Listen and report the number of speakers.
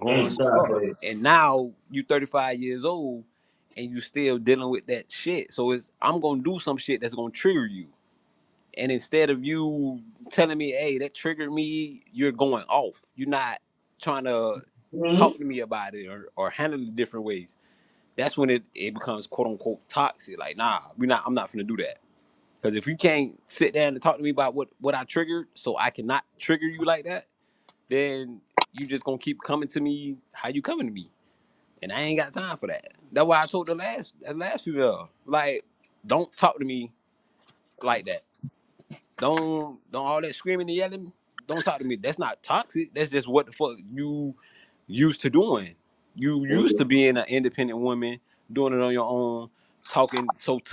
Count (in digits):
2